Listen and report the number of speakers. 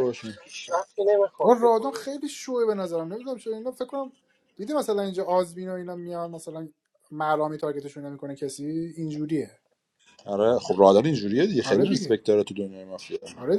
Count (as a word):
three